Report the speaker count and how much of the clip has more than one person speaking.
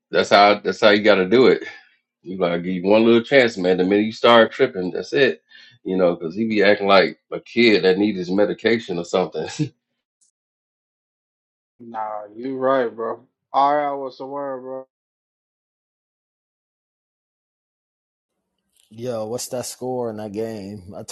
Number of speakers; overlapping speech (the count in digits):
3, no overlap